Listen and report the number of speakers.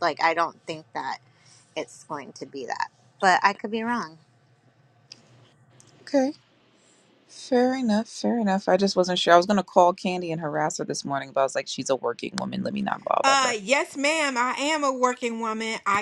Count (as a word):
three